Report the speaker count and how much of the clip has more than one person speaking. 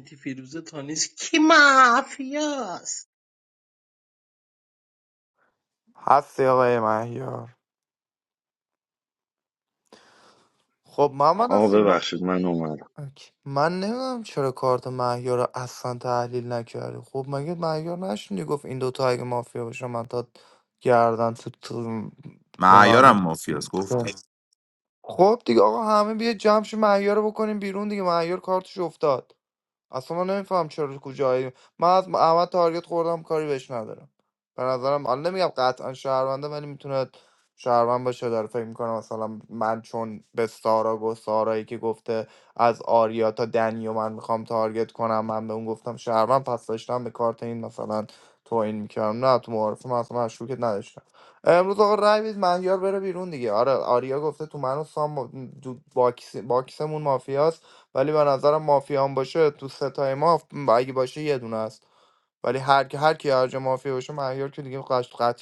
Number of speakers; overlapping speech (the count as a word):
four, about 1%